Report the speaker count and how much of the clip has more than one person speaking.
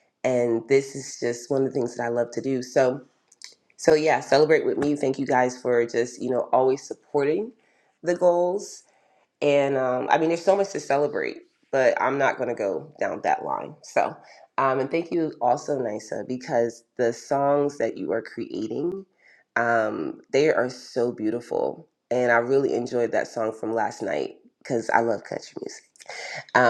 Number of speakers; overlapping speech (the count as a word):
one, no overlap